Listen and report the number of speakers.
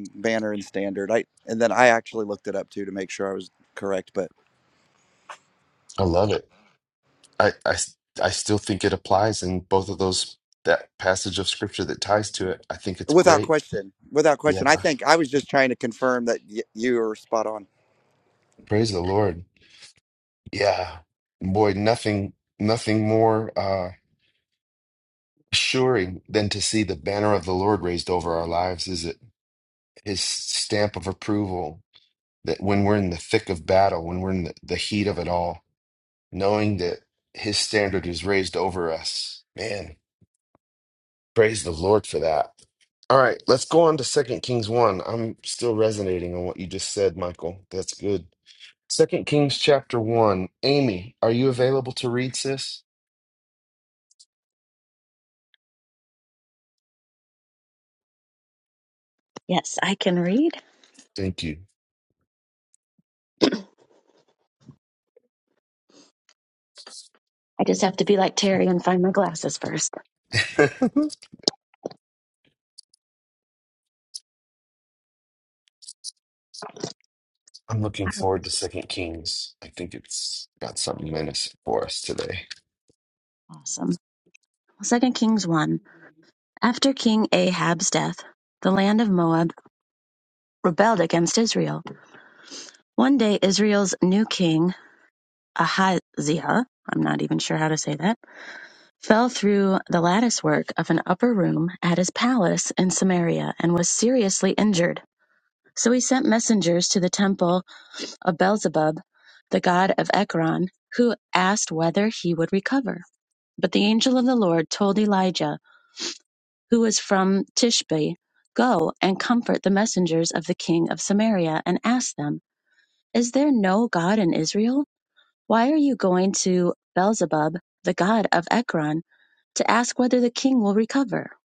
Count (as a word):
three